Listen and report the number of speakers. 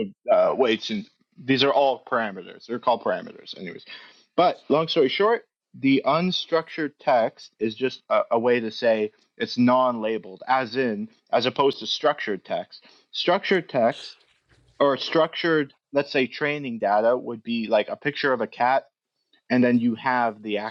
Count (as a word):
one